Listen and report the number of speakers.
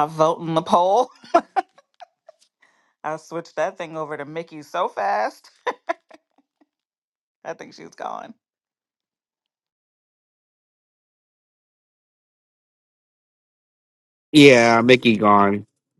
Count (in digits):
2